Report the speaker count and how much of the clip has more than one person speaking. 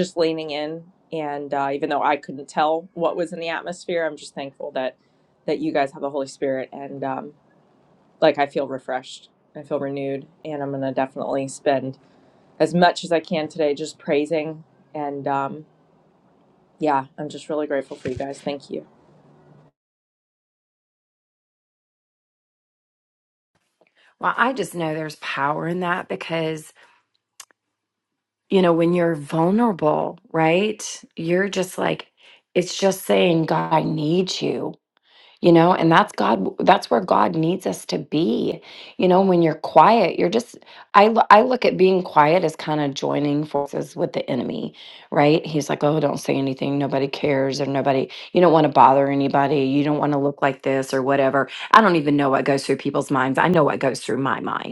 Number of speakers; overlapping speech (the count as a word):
two, no overlap